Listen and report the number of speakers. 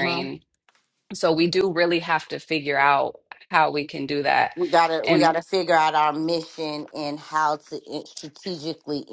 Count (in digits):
2